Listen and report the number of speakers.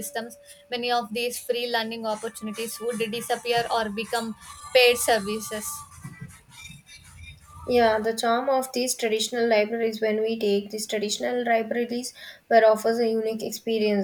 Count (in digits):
2